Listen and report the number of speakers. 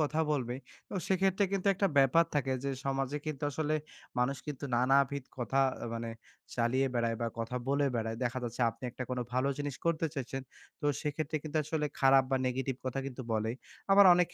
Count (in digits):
1